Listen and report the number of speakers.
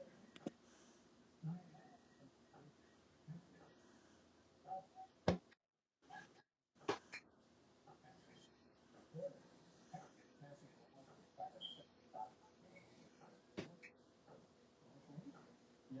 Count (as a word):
zero